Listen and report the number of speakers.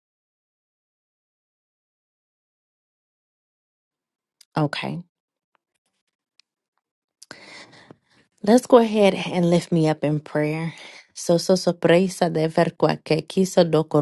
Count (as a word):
one